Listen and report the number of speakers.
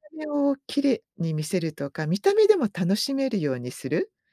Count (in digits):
1